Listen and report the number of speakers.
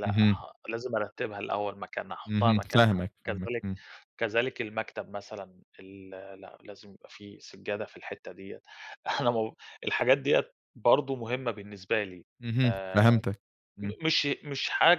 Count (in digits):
2